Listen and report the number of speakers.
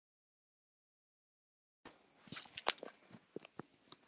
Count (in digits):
0